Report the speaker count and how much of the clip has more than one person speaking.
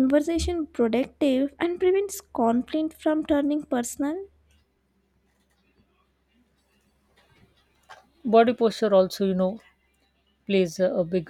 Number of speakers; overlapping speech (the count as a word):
two, no overlap